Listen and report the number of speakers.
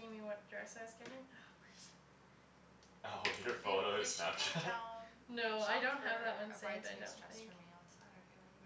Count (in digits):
3